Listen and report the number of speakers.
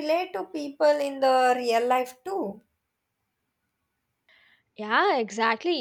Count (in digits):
2